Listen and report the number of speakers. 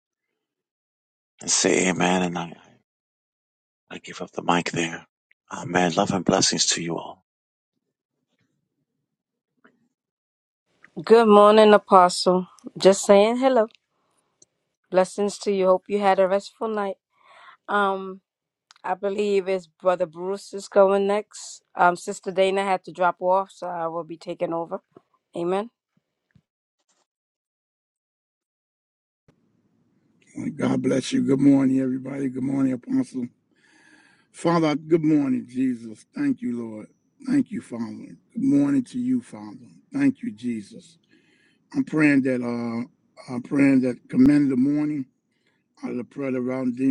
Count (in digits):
3